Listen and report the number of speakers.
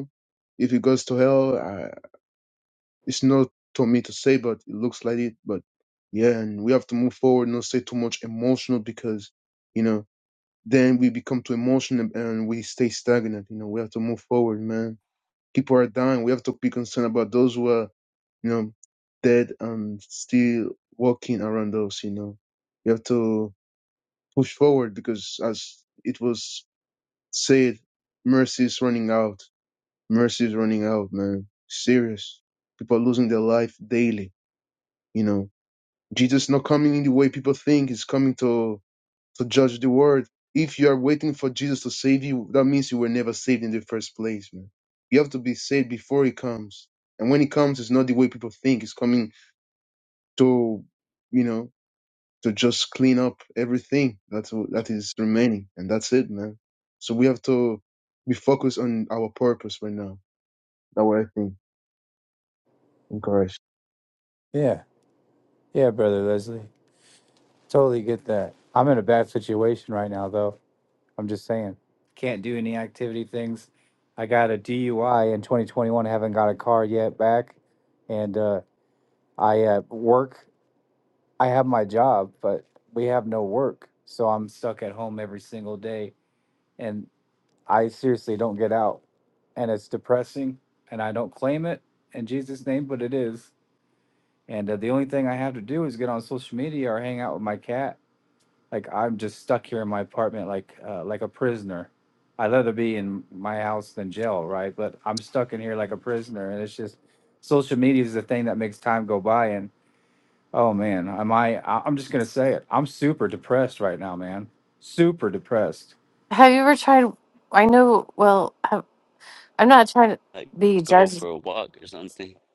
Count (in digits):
4